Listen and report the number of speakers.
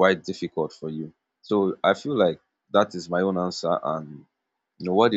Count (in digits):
1